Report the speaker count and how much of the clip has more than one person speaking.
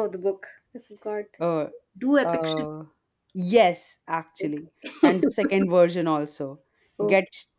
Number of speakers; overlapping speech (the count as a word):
two, about 14%